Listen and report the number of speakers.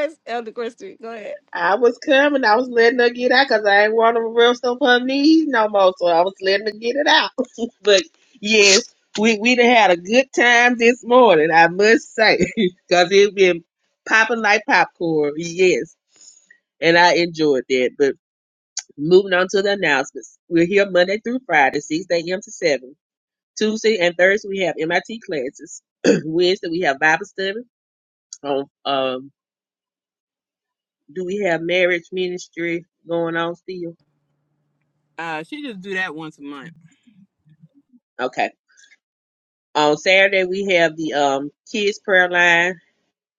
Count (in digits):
3